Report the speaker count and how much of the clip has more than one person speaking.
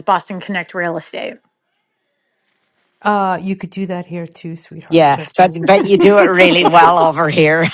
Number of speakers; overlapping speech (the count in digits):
3, about 10%